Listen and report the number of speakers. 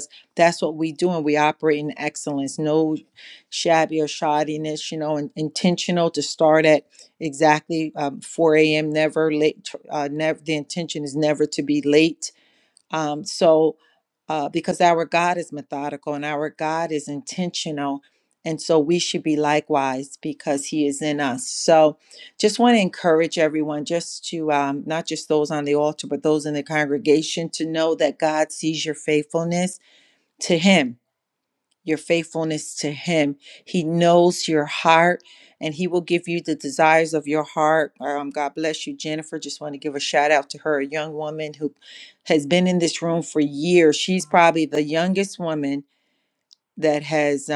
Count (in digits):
1